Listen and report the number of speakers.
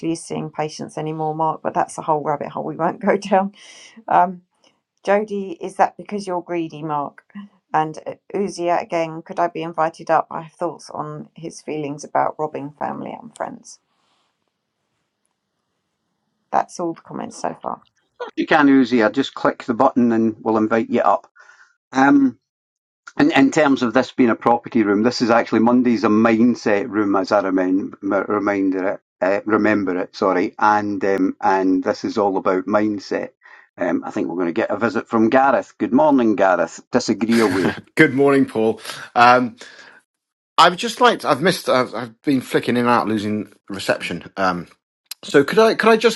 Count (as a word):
three